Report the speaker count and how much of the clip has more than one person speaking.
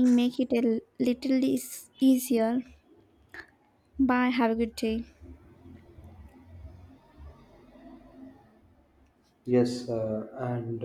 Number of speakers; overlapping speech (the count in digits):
2, no overlap